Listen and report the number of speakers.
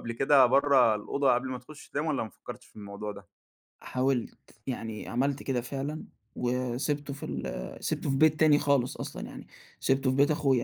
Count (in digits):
2